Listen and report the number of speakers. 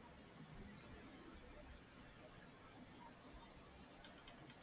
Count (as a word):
zero